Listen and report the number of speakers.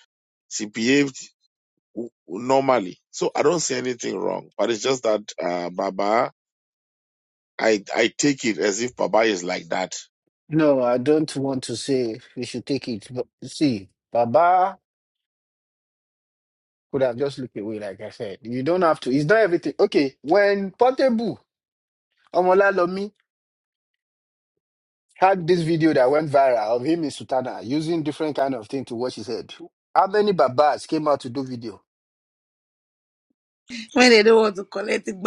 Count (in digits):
3